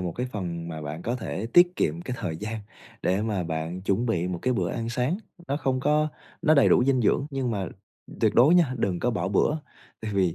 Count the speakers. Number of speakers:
one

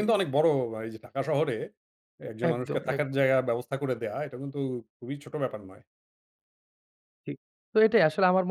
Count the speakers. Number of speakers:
two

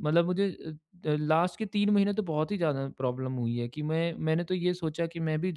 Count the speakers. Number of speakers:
one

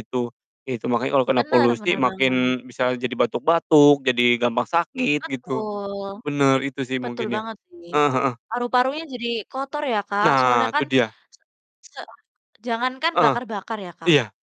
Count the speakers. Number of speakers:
two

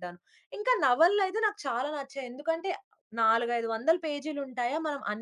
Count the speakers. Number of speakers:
one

